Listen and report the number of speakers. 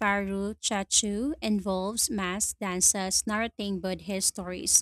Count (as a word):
one